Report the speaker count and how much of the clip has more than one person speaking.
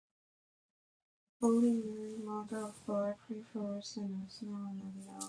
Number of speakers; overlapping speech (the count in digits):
1, no overlap